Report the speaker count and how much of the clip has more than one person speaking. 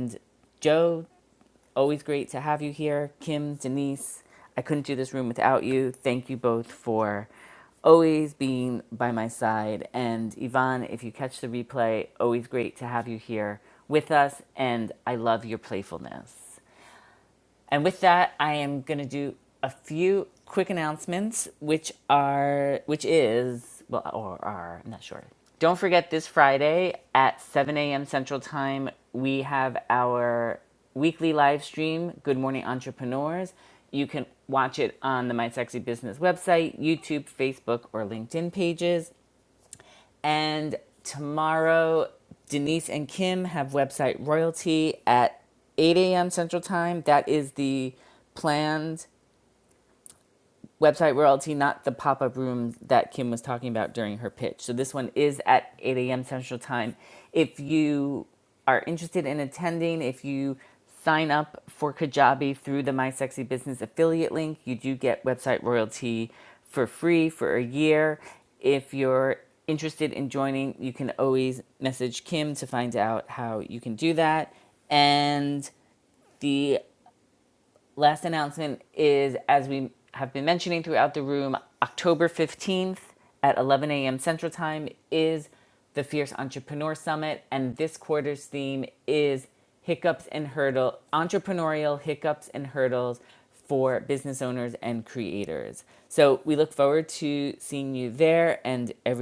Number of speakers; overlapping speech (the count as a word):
one, no overlap